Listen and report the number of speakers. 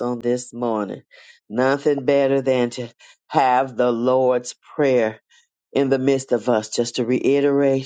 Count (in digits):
1